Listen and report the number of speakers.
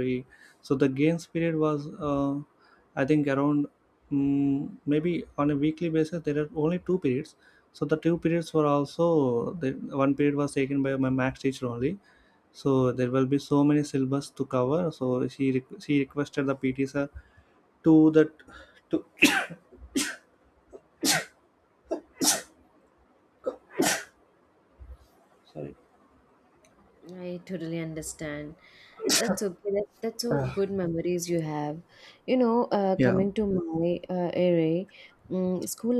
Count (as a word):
two